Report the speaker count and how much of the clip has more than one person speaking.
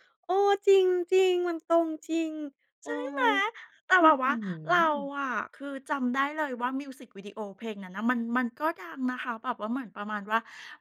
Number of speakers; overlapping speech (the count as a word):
two, about 6%